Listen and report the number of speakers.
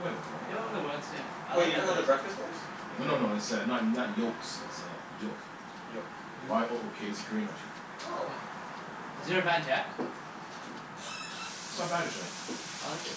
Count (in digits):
3